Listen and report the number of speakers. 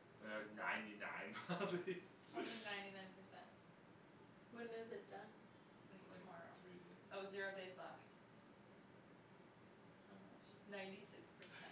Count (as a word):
three